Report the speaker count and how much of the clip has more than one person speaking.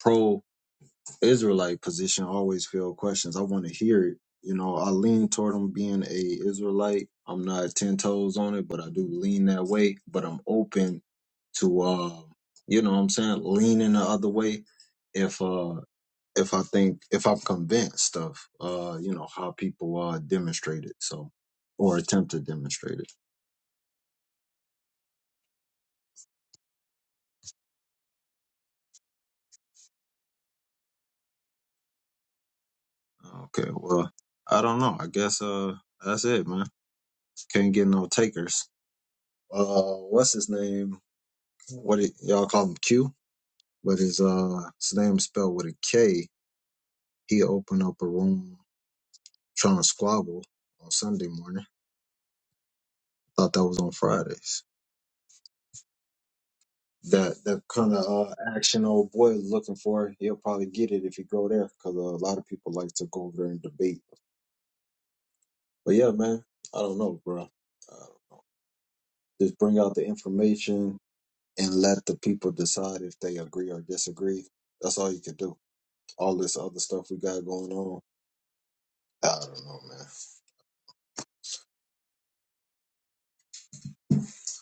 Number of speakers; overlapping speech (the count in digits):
1, no overlap